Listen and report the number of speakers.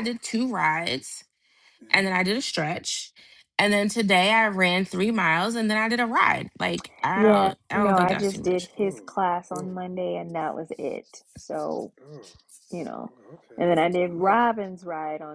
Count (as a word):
three